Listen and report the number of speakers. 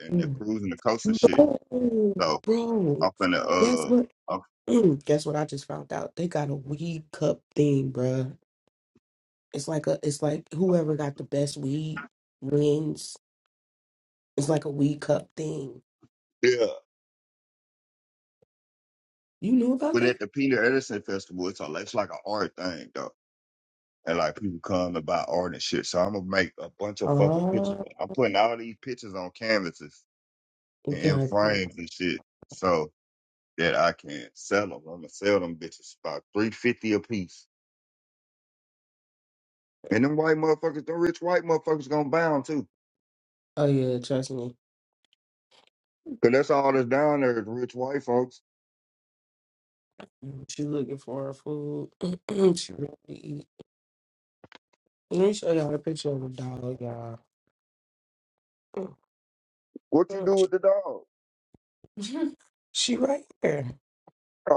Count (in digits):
2